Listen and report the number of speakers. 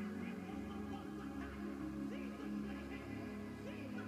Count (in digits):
0